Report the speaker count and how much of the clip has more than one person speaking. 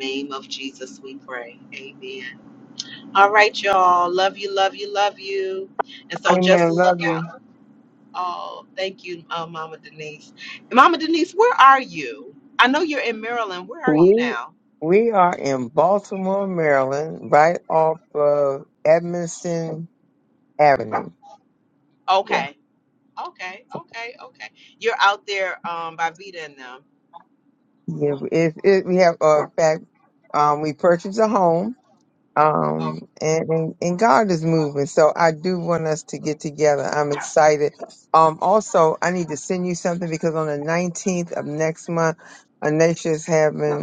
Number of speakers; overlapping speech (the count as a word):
two, about 4%